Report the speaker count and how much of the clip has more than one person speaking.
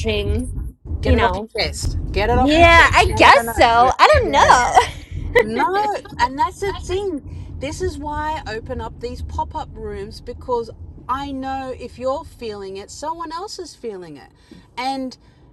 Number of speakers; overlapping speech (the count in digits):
2, about 20%